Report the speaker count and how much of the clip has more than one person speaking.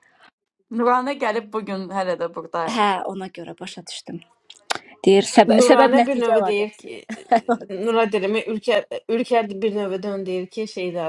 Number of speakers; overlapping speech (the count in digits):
3, about 14%